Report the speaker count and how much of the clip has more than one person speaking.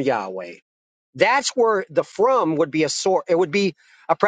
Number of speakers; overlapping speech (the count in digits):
1, no overlap